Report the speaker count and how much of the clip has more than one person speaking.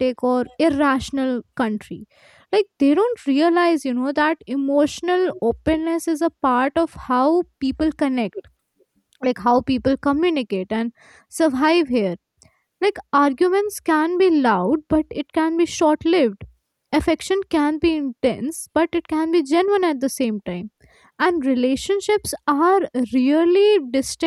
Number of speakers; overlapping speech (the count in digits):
1, no overlap